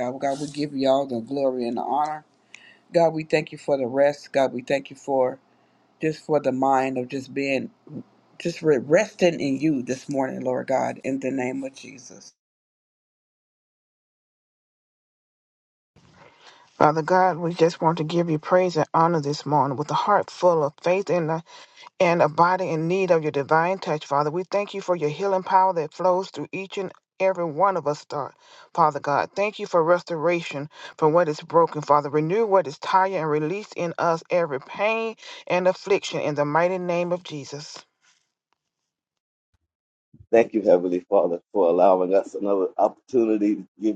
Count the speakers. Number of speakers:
three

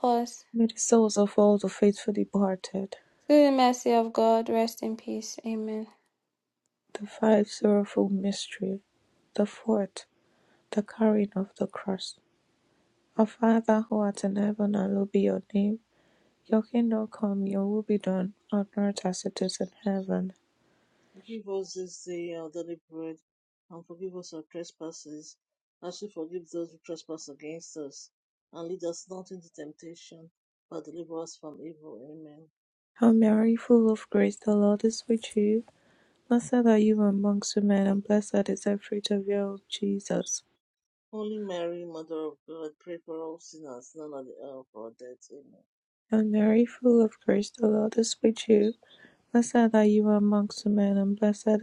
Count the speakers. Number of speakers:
three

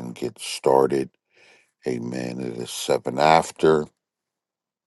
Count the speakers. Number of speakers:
one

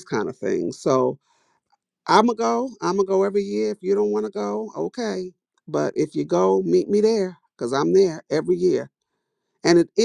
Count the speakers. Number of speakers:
one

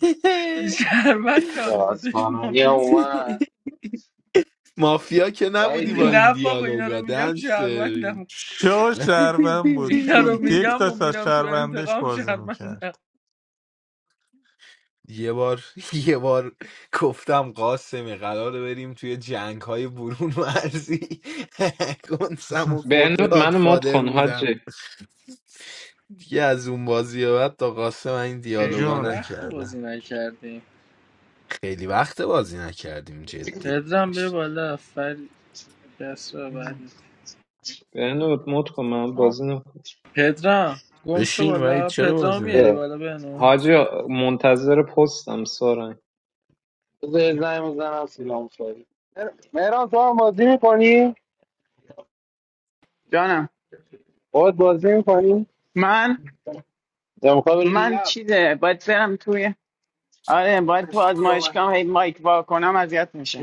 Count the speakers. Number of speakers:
six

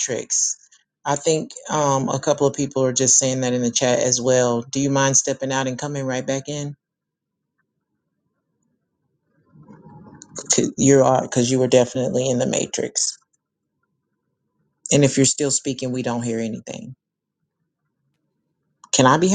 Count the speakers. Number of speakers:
one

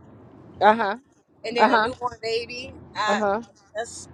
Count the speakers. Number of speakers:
two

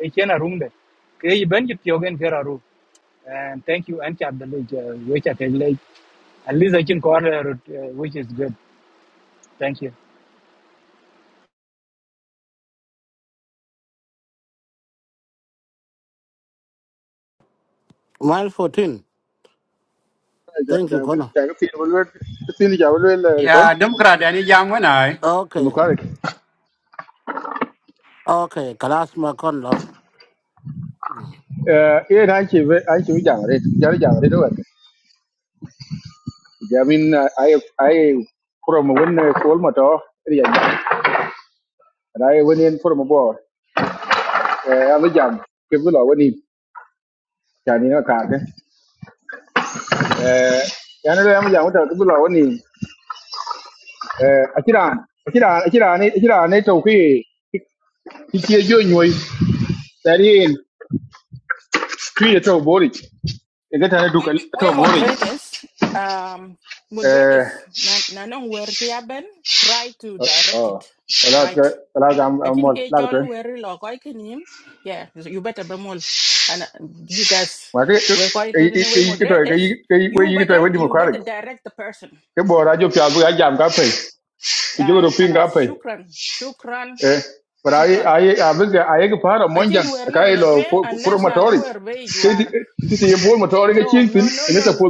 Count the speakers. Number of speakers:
five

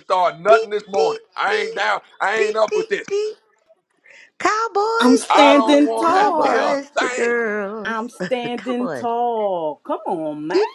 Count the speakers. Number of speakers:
three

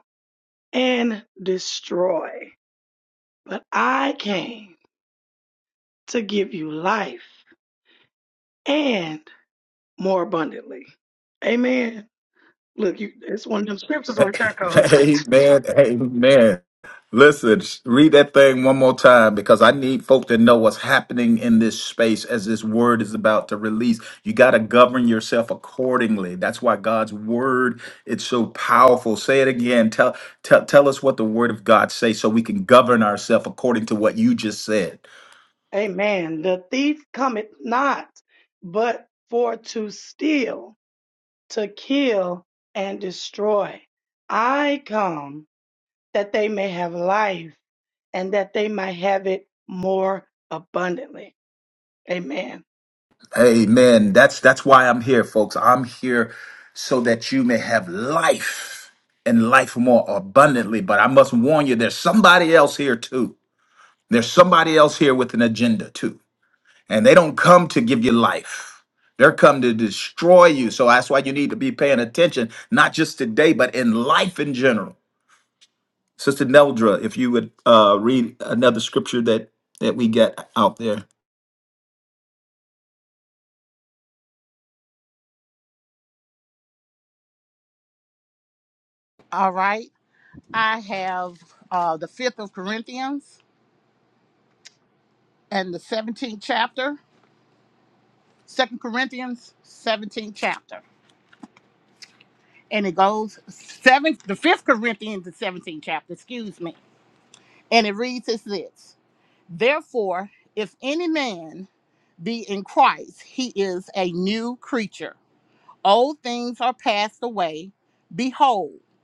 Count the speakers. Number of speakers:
three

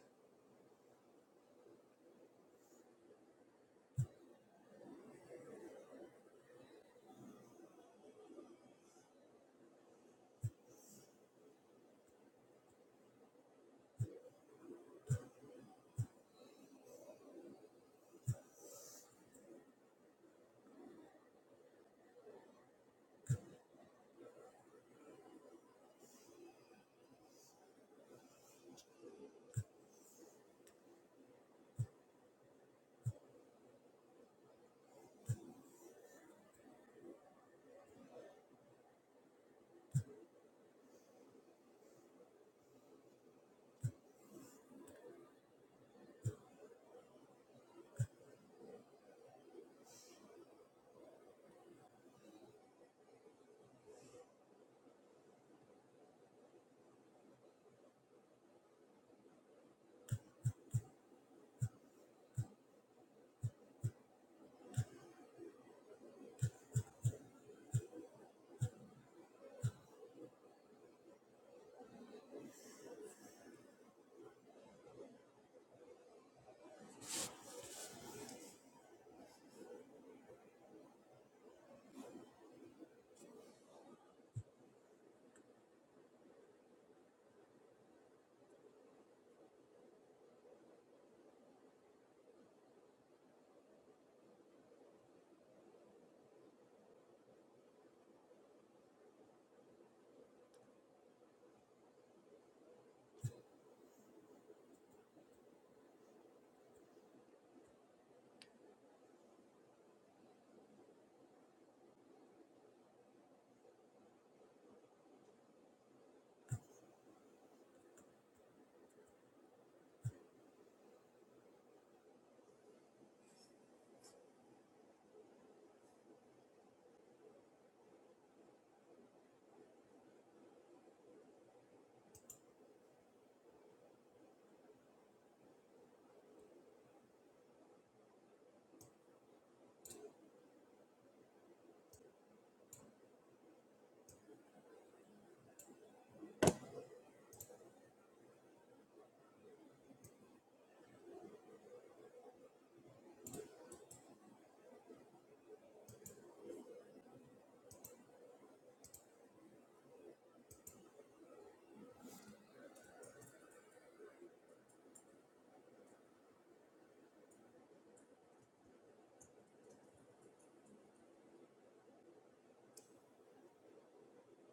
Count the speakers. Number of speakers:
zero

